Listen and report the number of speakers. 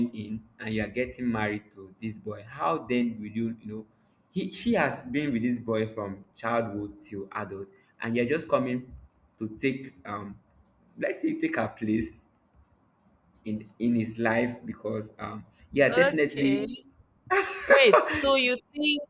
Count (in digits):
2